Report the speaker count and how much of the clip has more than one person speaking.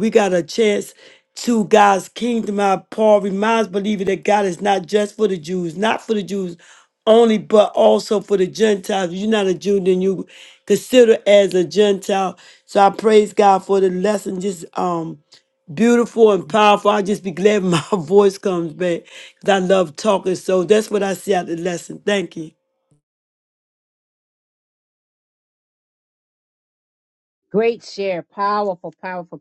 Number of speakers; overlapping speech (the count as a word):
two, no overlap